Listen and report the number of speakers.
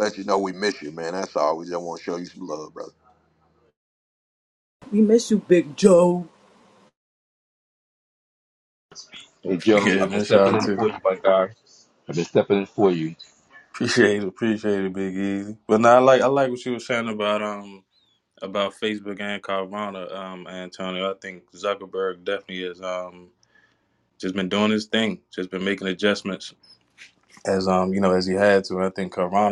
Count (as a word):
four